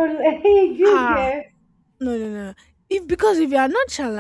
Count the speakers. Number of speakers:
two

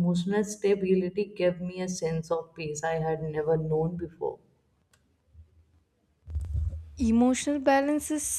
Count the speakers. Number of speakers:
two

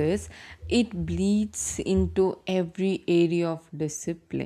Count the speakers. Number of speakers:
one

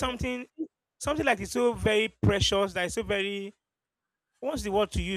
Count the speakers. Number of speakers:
one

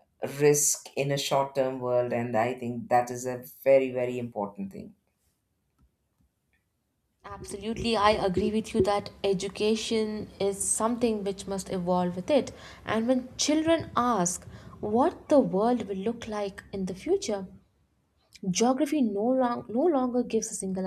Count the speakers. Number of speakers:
two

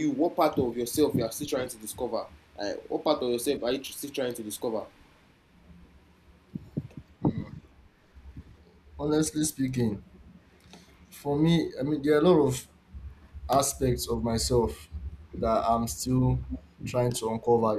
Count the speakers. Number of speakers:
two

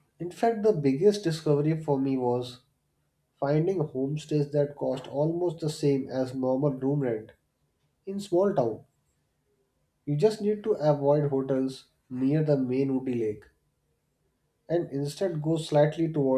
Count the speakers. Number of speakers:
one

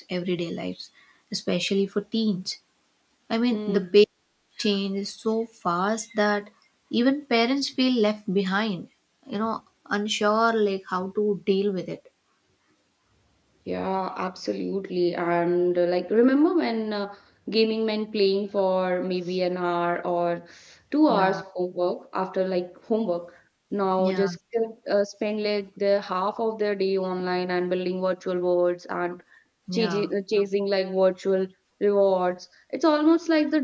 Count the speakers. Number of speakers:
two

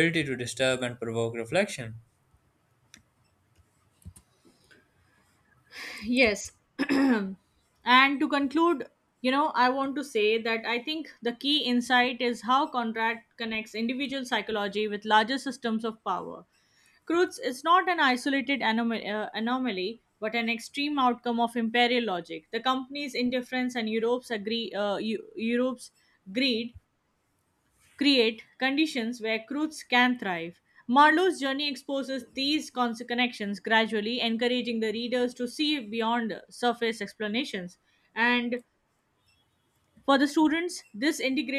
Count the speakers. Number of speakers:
two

